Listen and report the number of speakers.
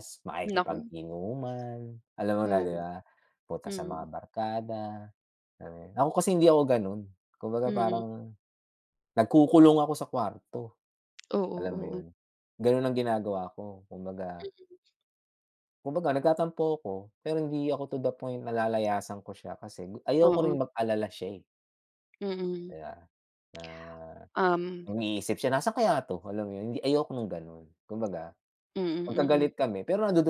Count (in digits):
2